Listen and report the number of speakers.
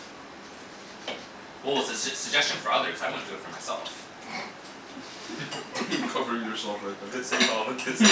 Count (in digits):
2